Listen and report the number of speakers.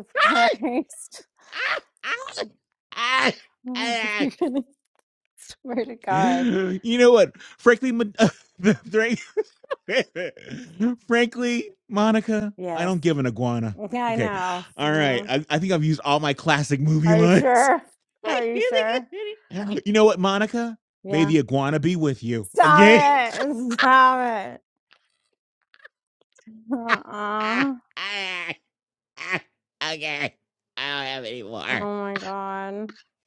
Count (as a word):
two